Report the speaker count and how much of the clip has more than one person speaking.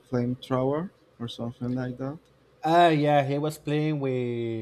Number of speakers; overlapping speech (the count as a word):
two, no overlap